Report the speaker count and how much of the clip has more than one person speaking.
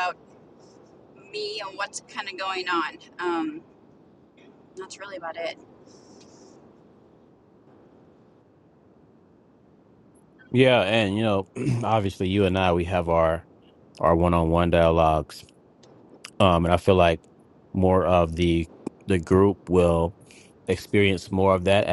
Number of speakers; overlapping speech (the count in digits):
2, no overlap